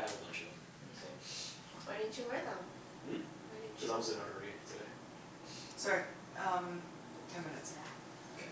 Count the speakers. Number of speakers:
3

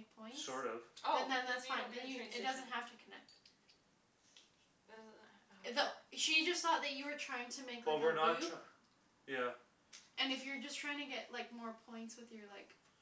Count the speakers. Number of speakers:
3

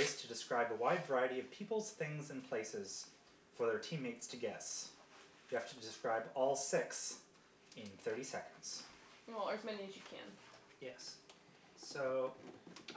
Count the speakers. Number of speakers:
2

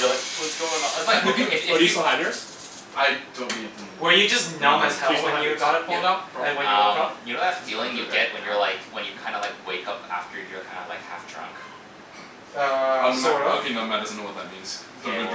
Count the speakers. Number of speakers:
4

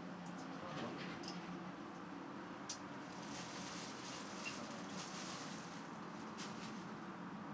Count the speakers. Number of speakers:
1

